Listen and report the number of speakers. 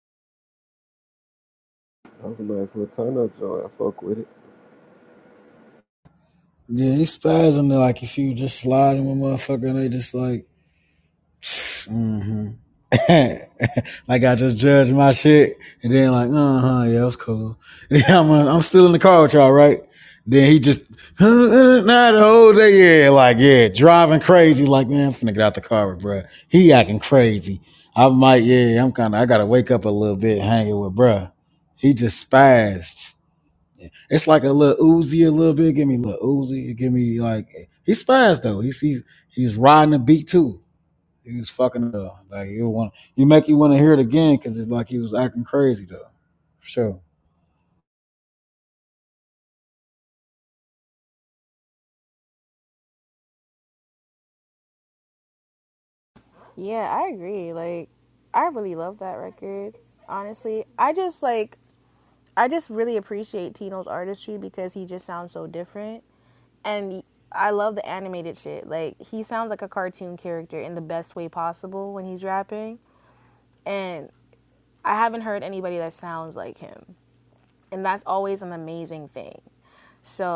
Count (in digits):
3